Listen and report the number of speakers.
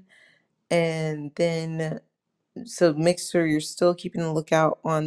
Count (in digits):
1